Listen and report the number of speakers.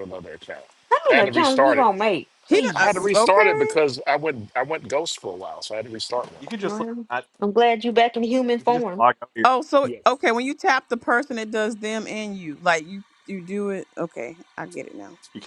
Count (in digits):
4